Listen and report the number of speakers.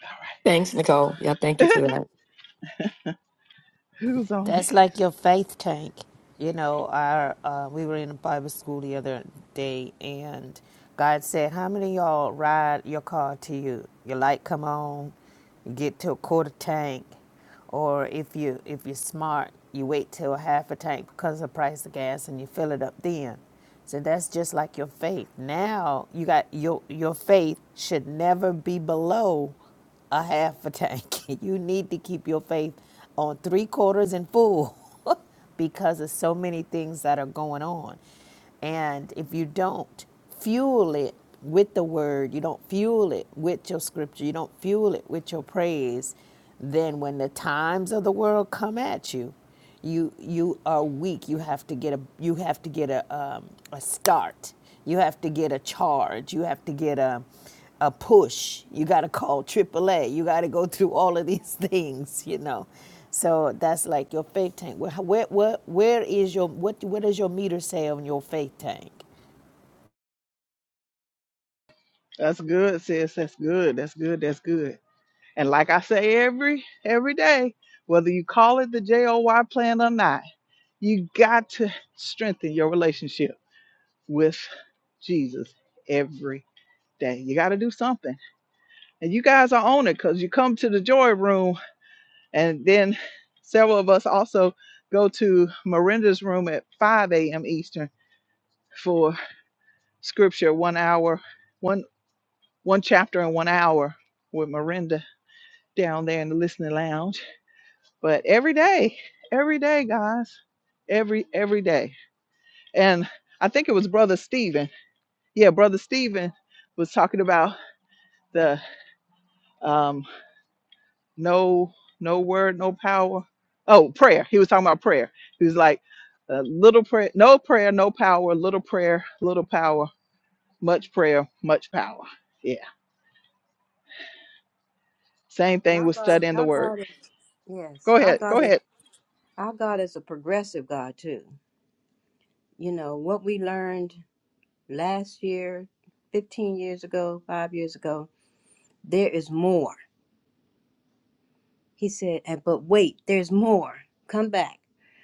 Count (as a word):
four